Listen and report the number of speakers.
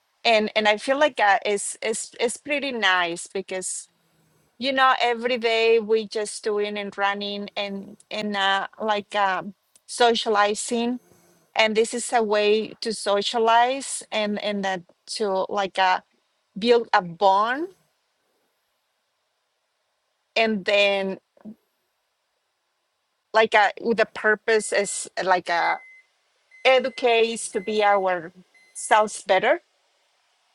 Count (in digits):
1